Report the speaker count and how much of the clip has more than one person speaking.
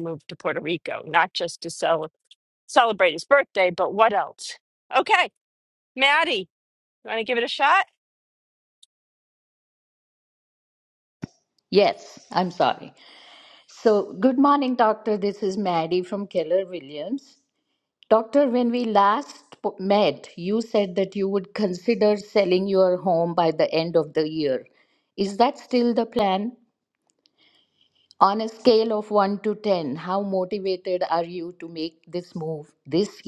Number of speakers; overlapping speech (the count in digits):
2, no overlap